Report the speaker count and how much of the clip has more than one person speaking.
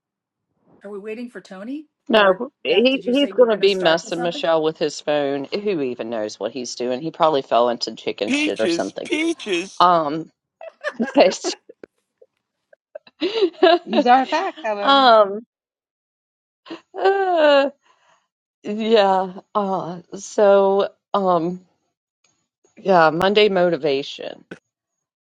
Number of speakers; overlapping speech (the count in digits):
4, about 12%